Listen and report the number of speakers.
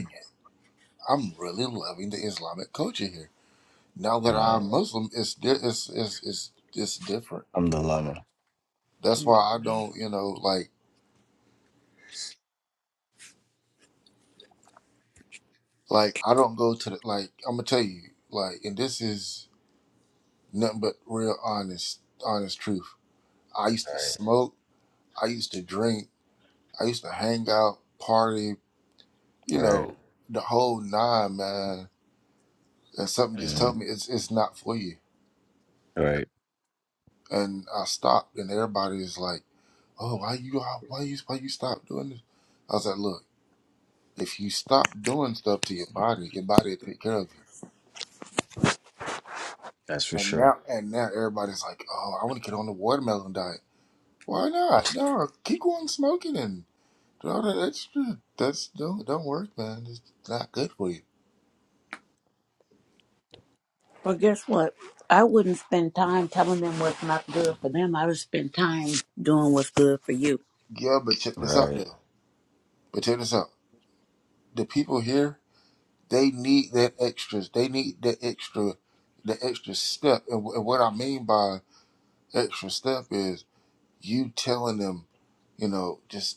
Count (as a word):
three